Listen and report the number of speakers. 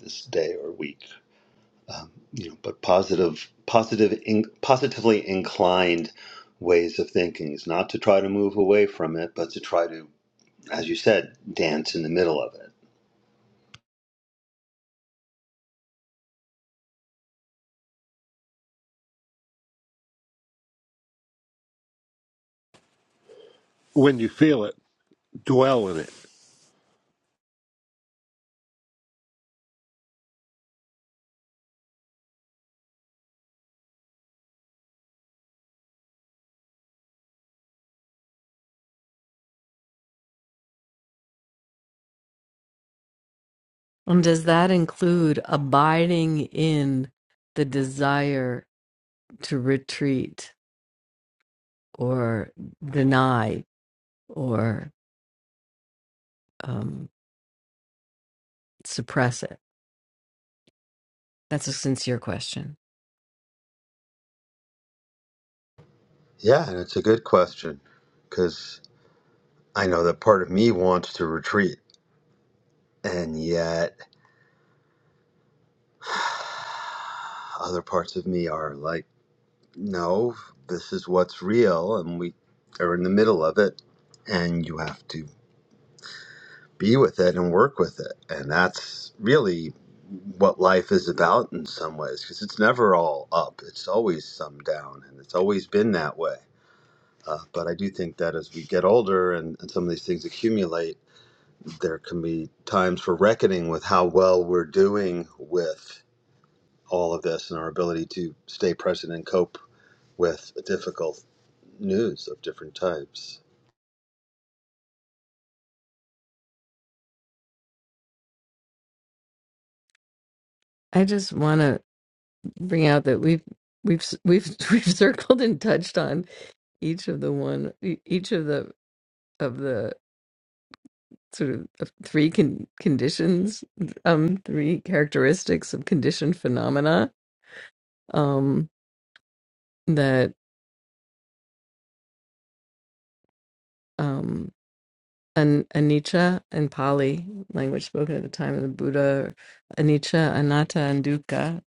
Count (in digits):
3